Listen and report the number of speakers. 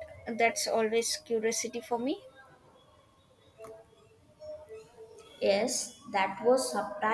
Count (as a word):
two